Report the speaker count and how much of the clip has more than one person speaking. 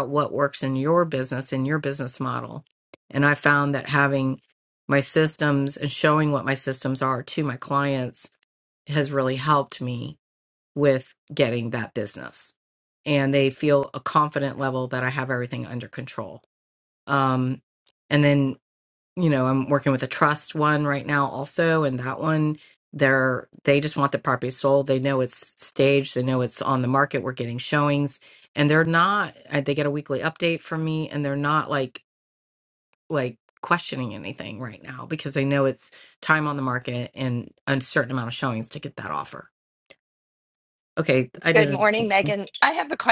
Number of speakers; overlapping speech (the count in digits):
2, about 2%